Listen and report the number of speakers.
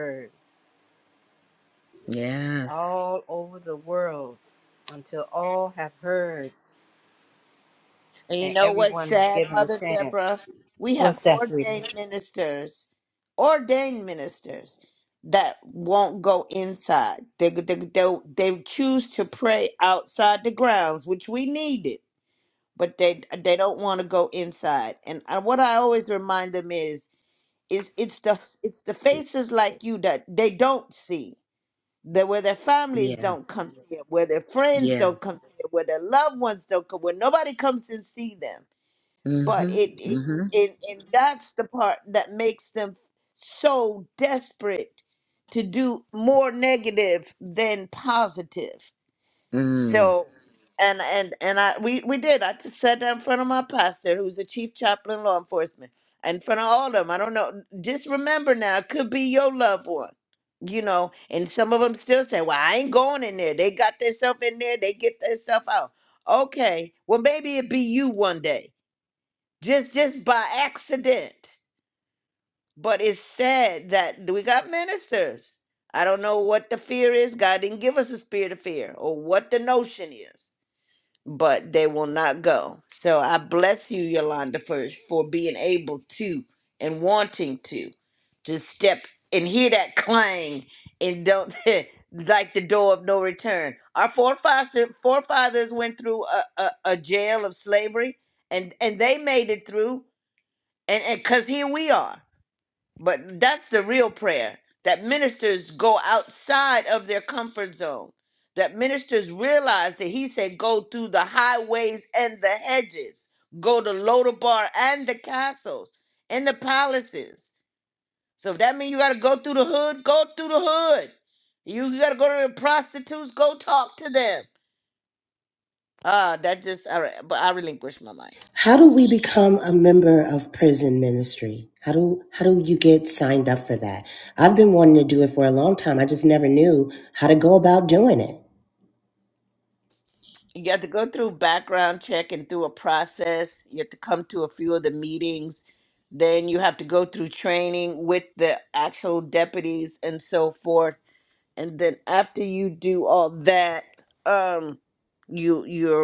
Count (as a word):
four